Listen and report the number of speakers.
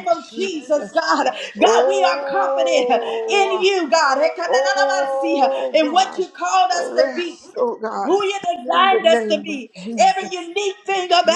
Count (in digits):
2